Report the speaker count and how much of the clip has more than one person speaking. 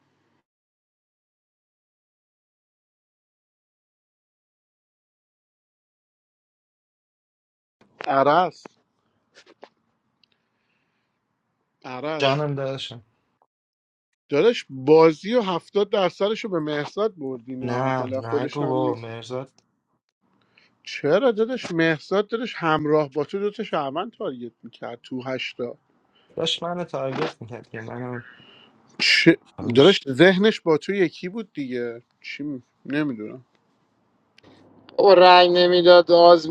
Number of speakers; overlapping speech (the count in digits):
3, about 4%